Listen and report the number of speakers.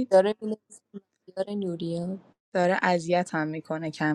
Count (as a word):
two